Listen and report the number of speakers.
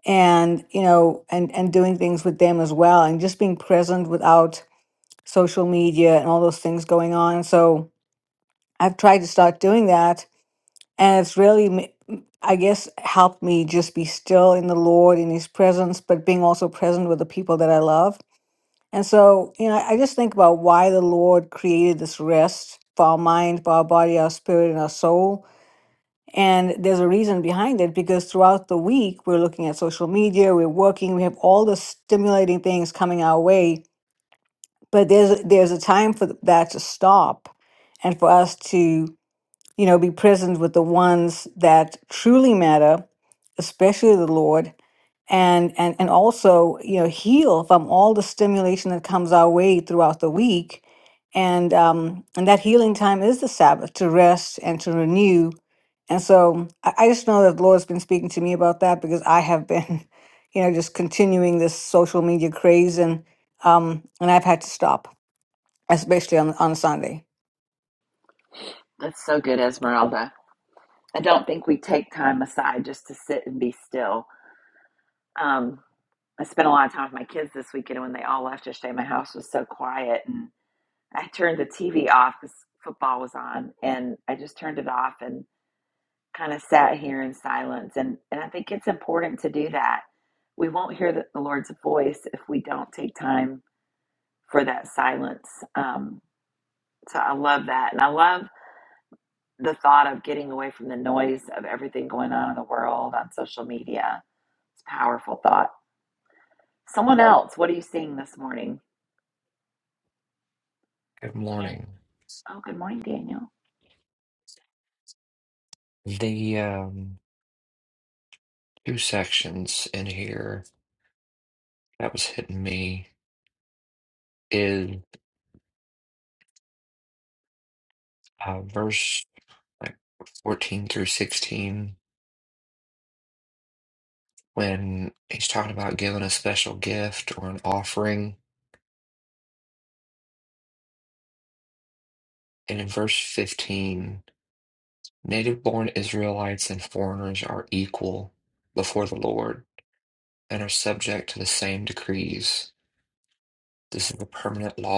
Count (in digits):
3